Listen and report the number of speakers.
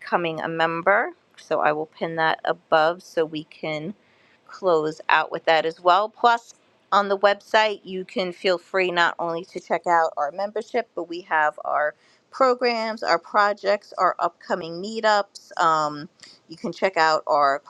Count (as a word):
one